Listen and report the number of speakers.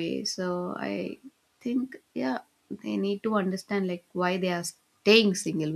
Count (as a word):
one